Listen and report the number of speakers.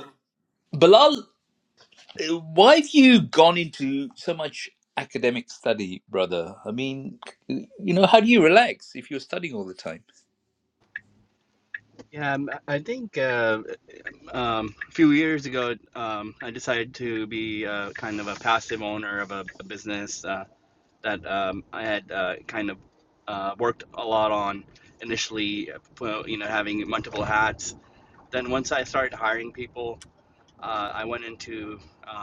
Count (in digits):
2